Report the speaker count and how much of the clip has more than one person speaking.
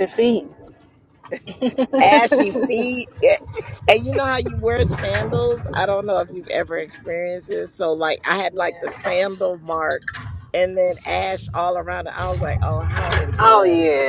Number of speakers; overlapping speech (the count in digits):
2, about 8%